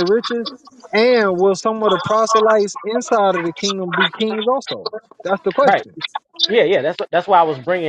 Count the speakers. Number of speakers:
2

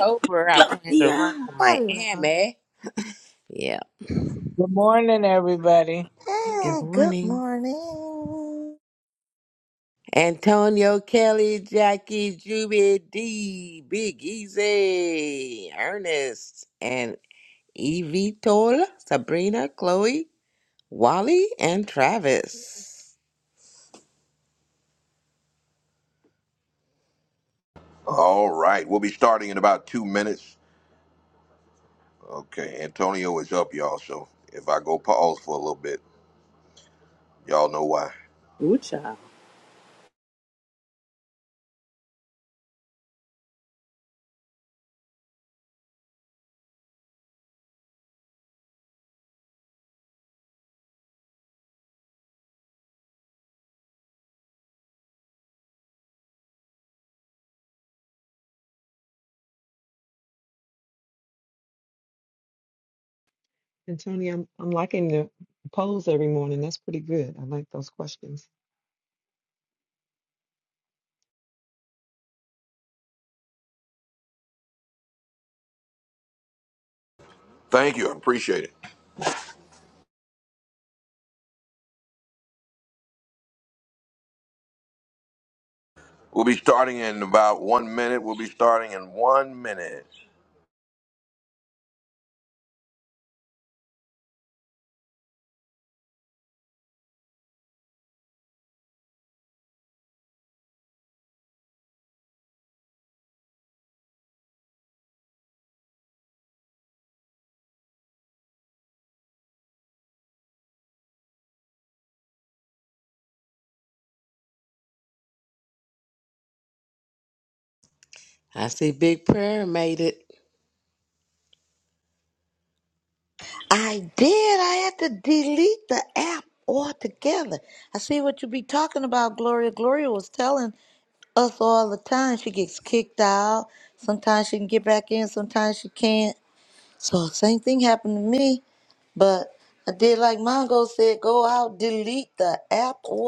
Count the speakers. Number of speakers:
6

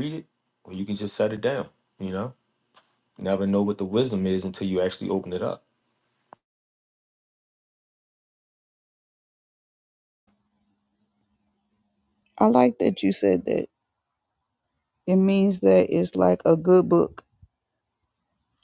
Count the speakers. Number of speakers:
2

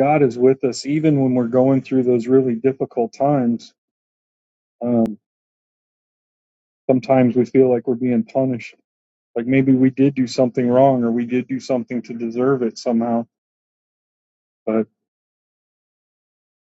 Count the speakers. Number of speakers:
1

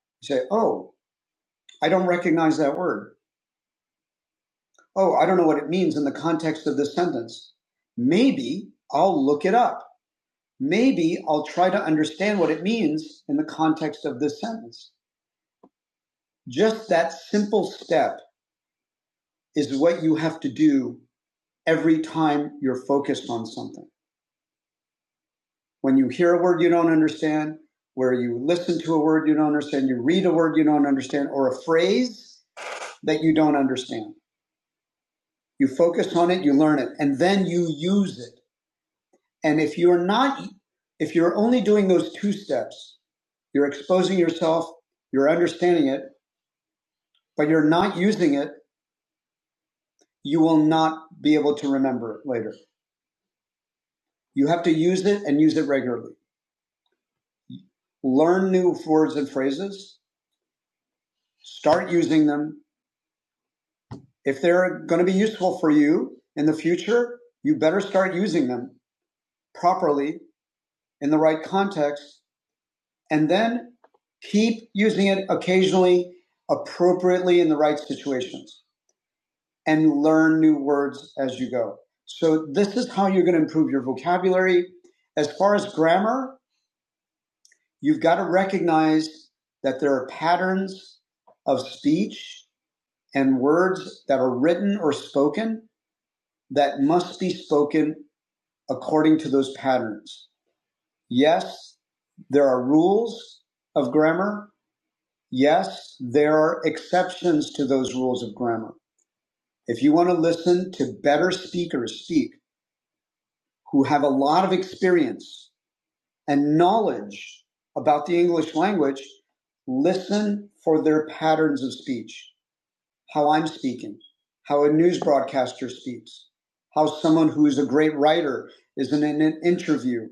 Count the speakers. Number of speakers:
1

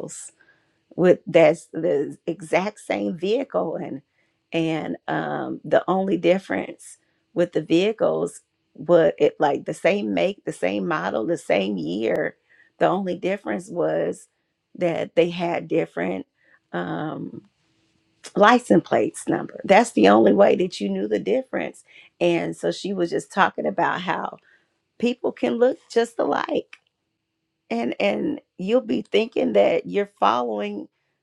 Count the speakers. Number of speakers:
1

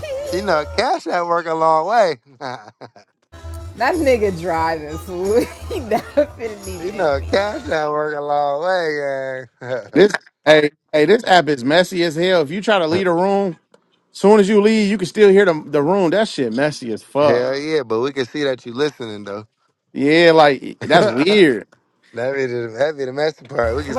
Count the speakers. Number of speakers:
3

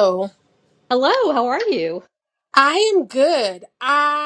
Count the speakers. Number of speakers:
2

